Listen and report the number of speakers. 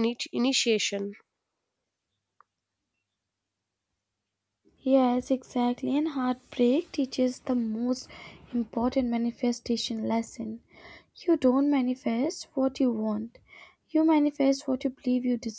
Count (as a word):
two